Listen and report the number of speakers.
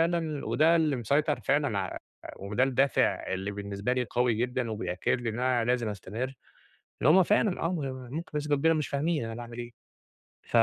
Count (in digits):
1